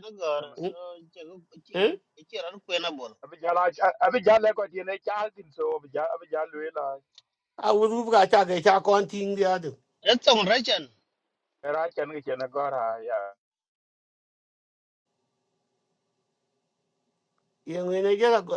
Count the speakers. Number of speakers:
three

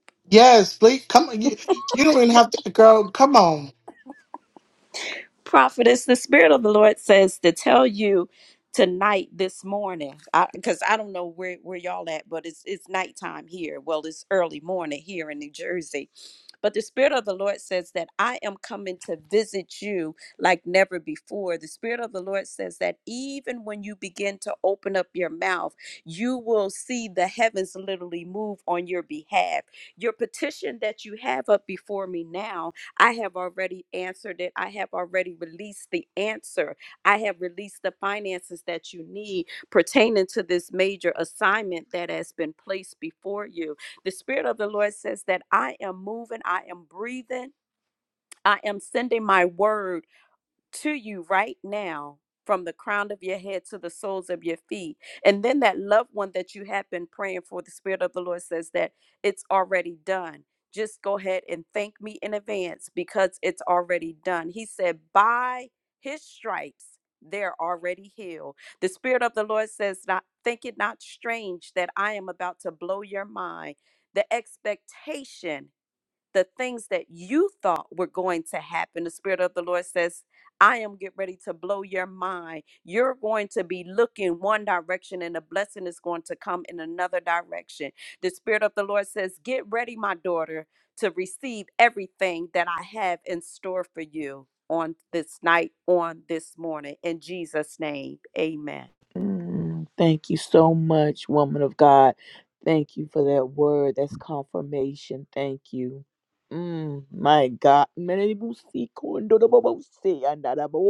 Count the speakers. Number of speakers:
three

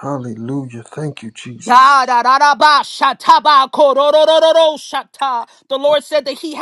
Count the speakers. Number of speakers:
two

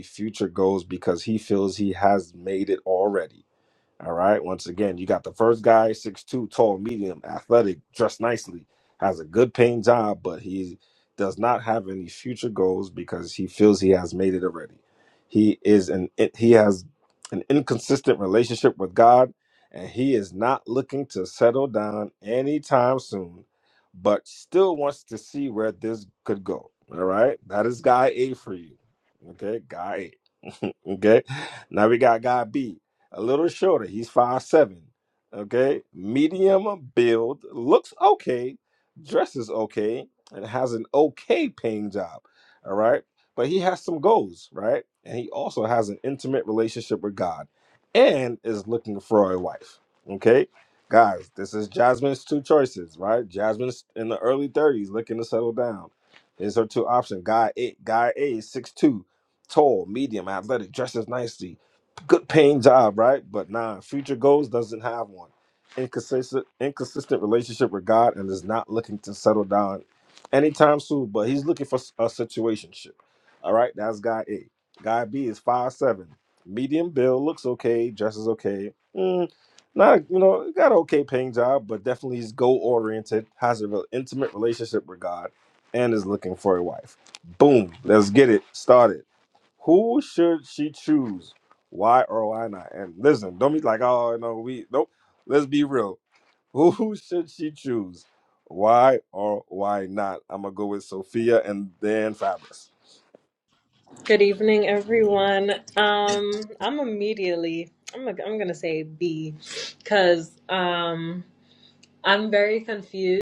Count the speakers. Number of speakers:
two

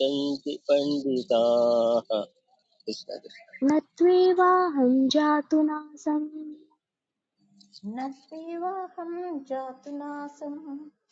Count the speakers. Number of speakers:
three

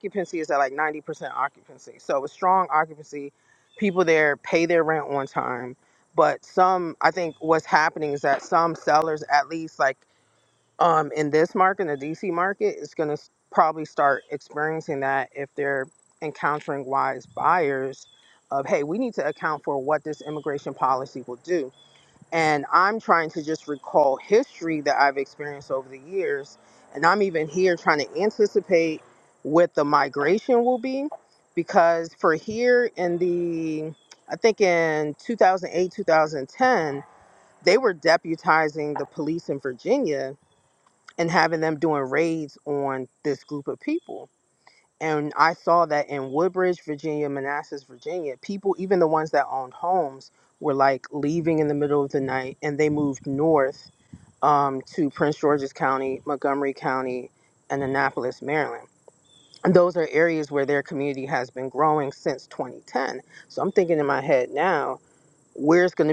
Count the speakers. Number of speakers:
one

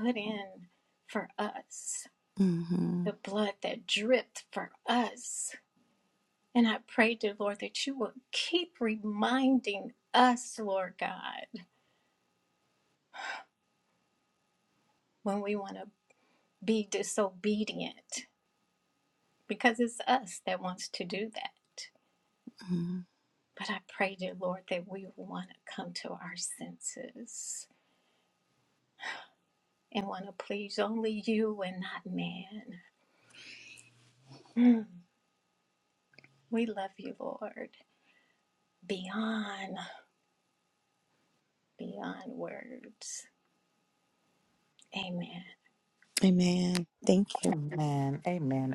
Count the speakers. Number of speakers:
three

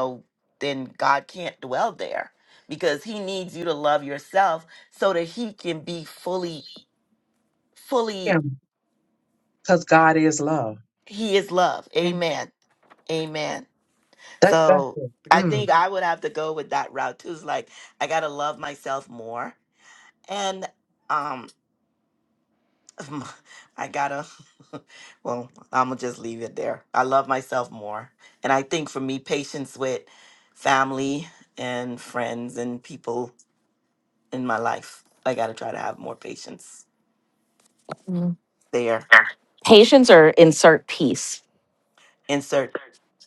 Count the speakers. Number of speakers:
three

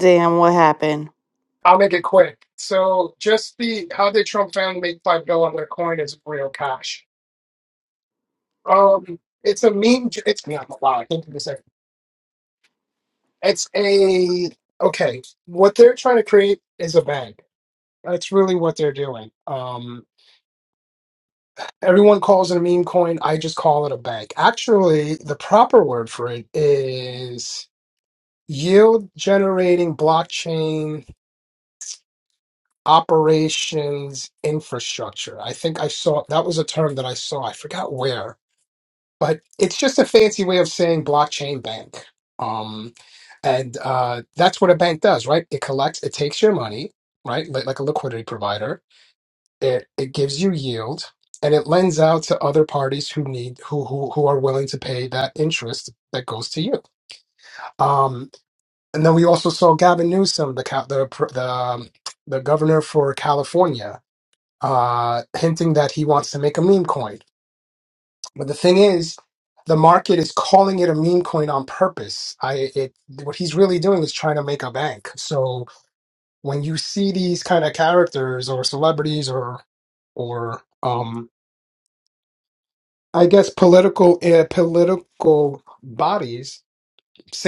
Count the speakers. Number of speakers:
two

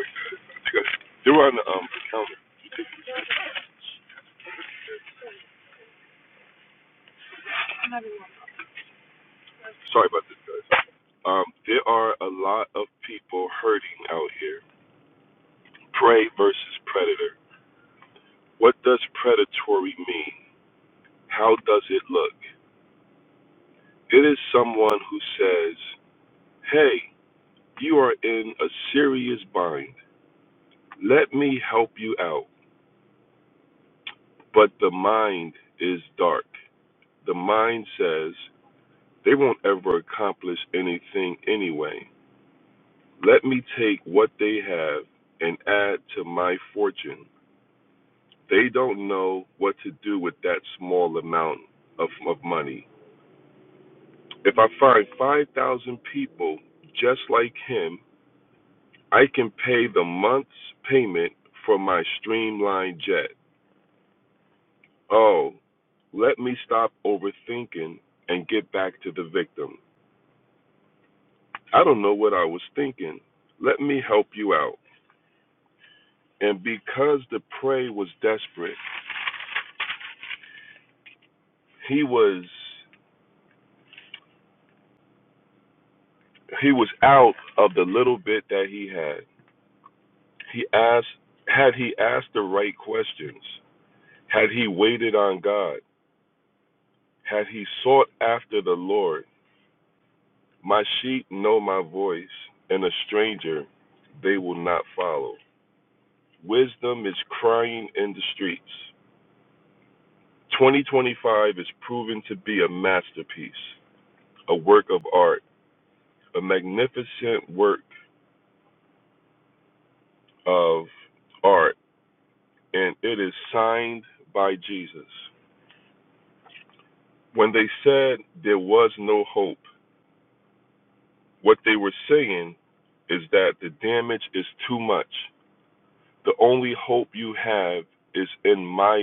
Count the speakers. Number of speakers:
one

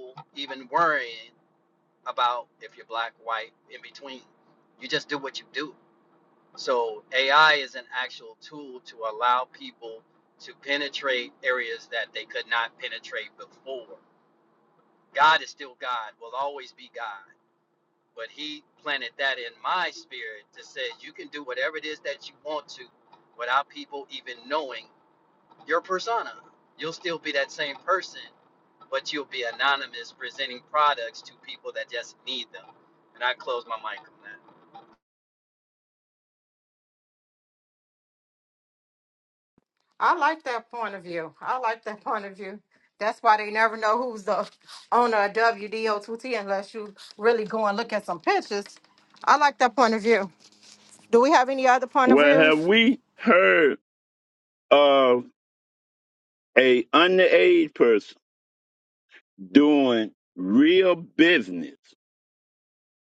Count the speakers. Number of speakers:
three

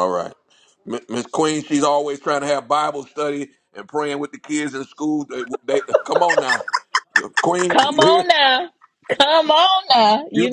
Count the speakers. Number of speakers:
two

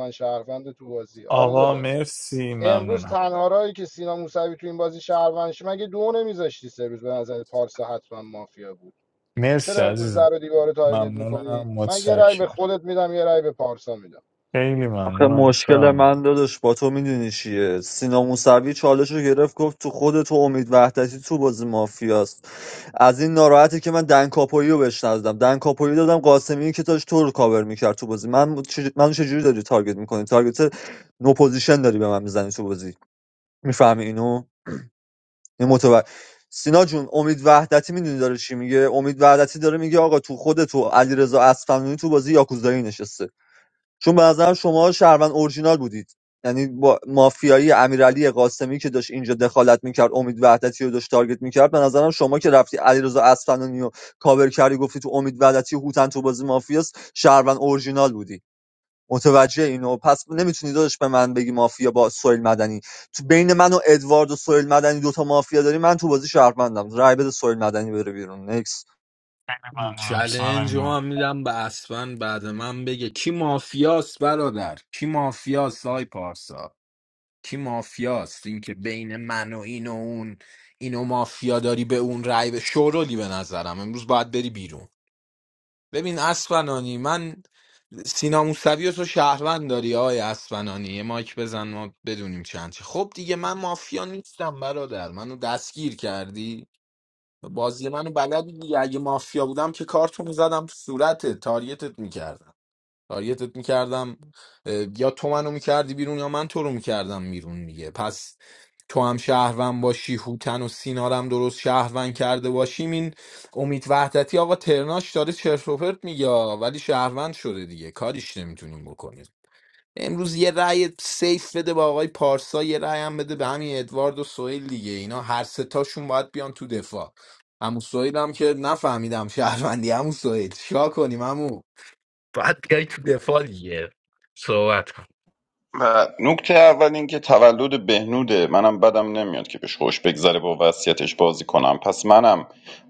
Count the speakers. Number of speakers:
five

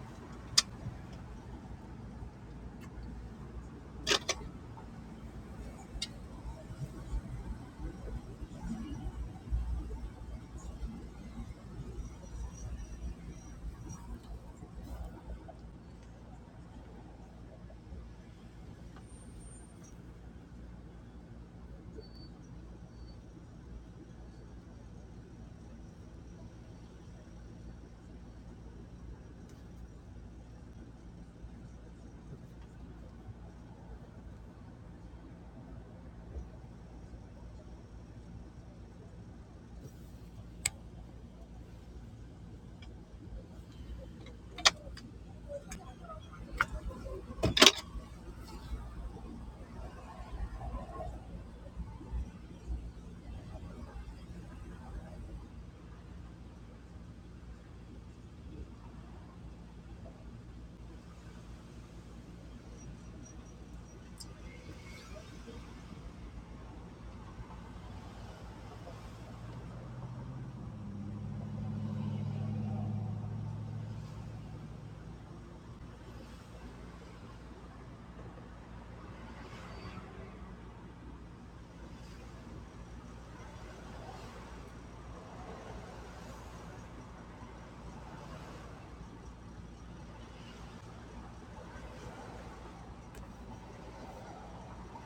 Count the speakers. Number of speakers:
zero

